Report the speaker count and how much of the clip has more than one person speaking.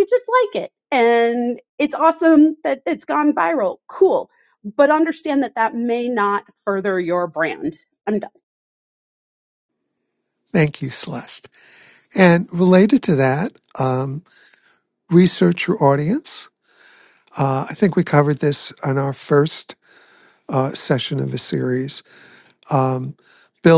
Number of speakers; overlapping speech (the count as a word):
two, no overlap